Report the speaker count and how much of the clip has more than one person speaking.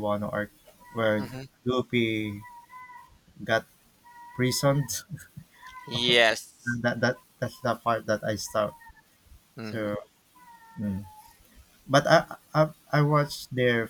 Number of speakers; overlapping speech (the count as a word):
two, about 2%